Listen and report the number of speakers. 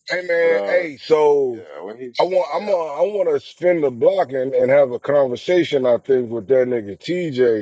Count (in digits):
2